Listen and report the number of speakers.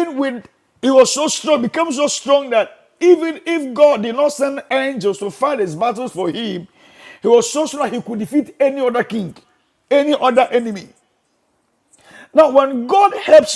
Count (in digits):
1